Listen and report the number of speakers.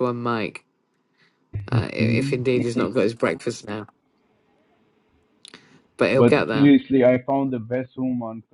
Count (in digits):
2